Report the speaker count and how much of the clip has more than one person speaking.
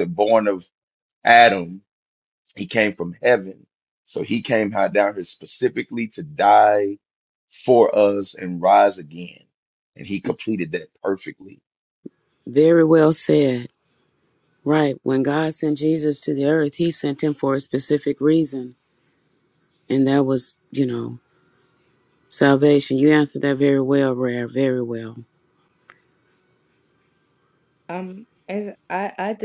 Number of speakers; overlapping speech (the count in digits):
3, no overlap